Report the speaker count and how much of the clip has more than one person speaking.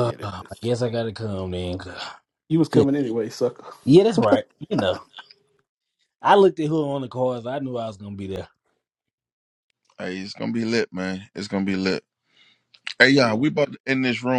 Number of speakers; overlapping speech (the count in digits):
3, about 2%